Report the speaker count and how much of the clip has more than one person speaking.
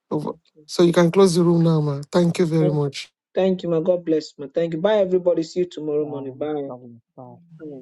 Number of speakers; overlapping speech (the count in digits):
3, about 13%